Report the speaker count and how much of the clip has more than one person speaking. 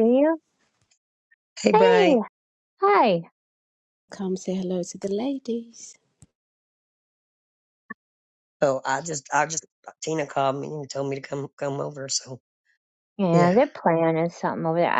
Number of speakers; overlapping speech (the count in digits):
3, about 5%